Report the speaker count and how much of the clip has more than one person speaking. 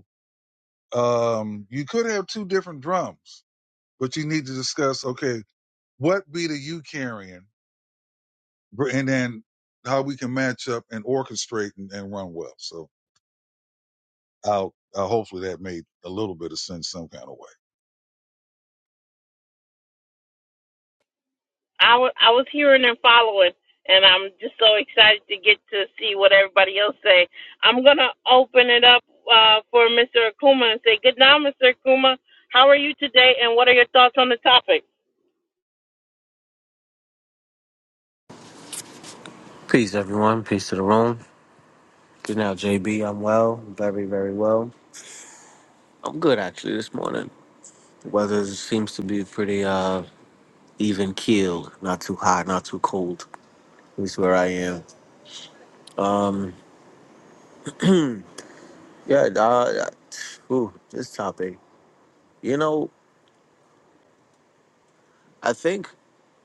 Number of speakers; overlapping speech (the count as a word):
three, no overlap